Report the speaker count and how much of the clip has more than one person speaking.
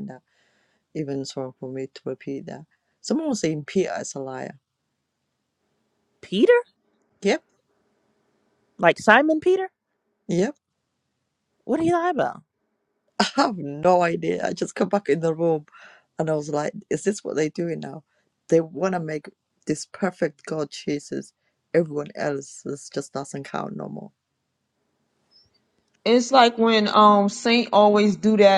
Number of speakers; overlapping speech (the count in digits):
3, no overlap